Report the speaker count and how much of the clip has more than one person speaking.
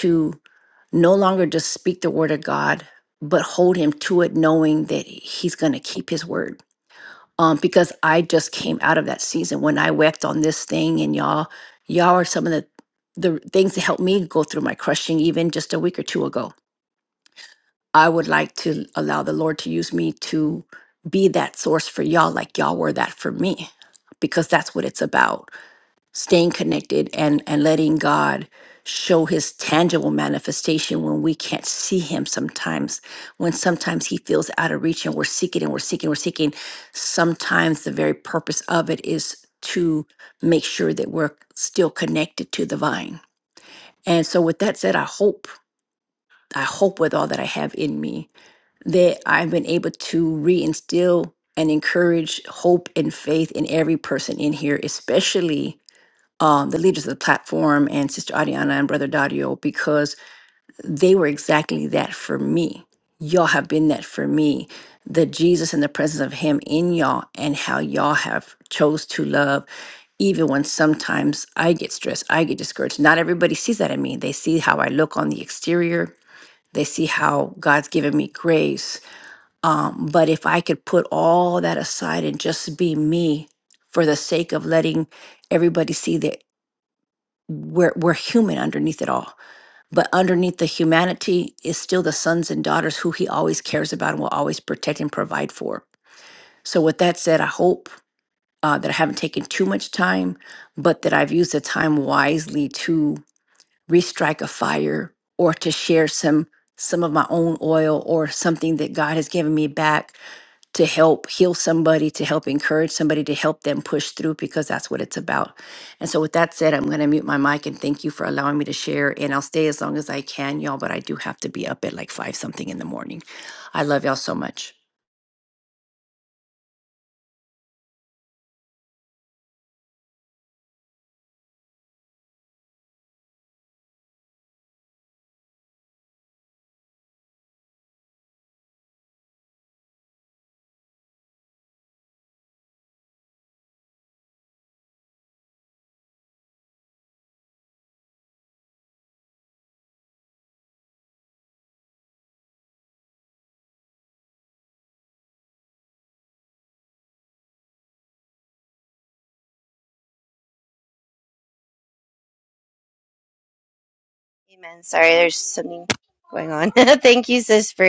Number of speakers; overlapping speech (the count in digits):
2, no overlap